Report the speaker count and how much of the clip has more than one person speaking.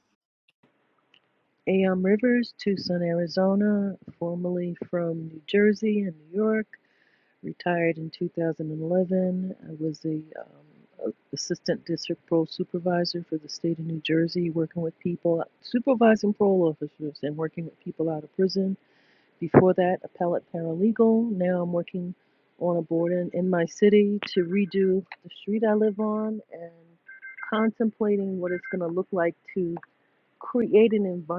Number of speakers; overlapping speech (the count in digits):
1, no overlap